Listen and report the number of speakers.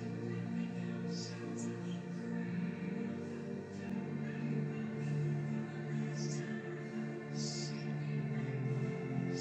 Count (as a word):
zero